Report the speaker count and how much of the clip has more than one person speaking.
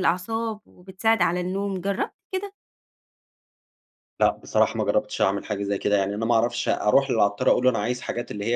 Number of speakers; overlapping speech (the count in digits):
2, no overlap